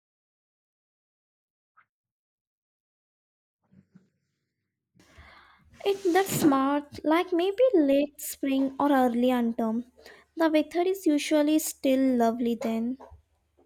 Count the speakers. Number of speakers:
1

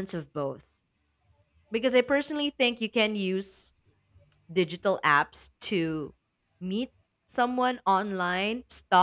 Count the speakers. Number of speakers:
1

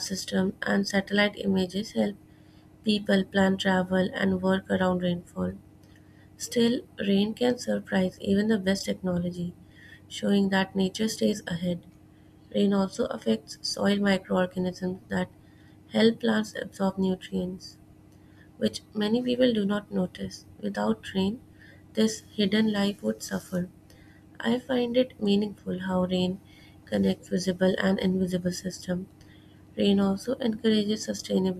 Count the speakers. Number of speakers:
1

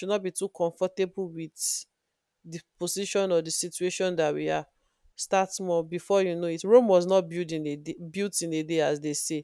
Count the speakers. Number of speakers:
1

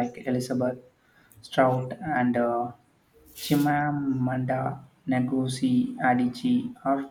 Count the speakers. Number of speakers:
1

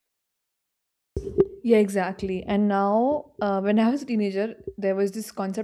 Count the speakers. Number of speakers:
1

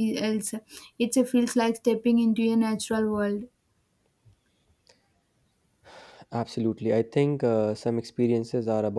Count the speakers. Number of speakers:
2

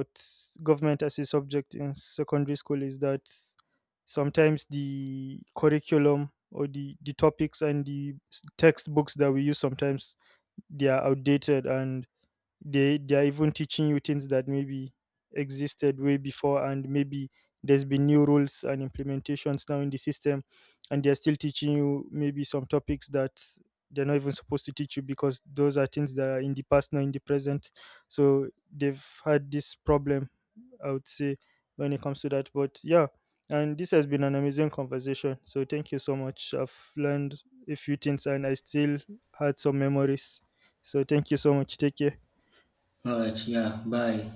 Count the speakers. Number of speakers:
2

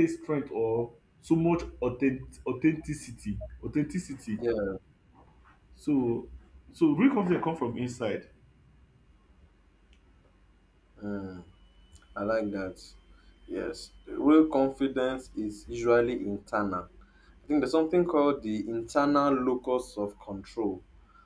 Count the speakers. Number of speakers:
2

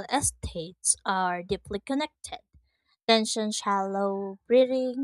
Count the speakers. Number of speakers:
1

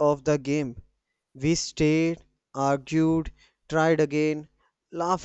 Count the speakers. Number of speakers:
1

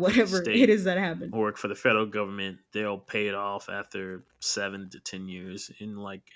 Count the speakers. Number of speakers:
2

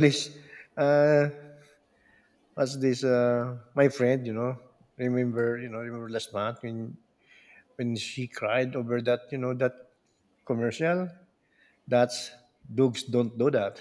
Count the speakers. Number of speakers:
1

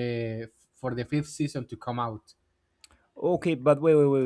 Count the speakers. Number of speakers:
2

